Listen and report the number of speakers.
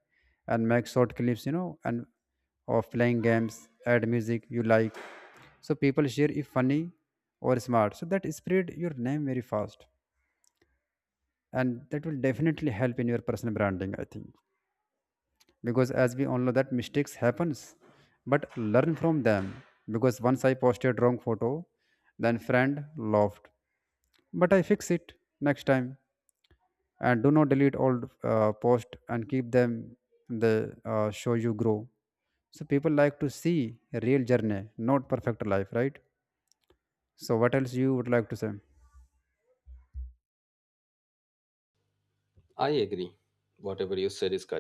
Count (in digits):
2